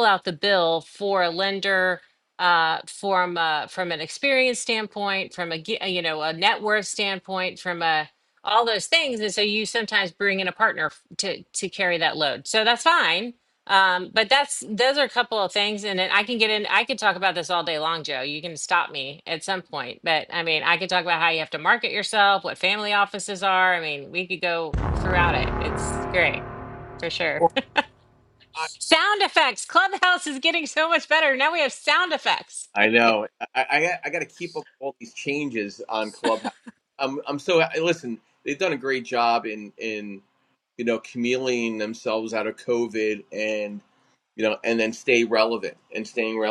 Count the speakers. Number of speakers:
2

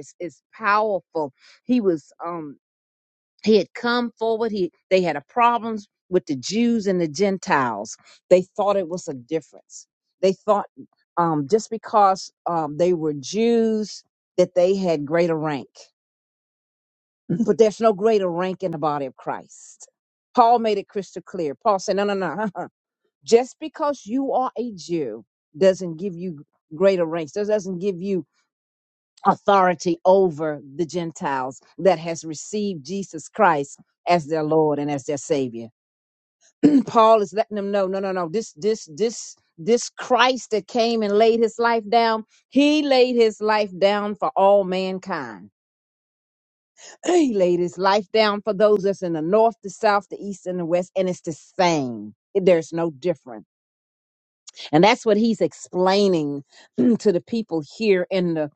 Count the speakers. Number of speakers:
1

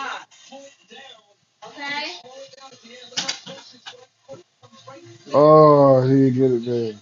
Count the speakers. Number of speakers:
1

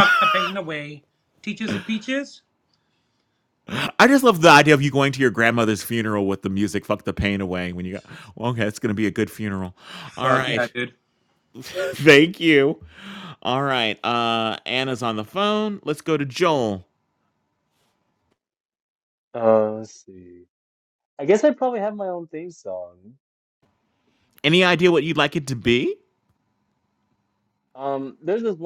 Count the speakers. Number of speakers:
3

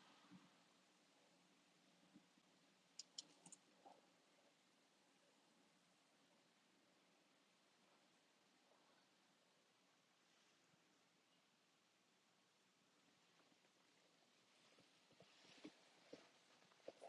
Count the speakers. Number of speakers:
0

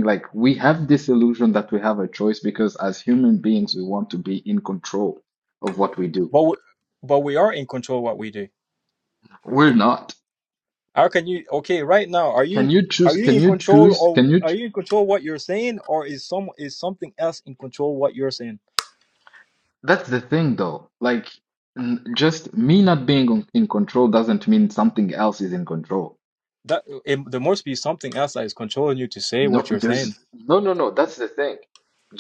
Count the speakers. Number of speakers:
2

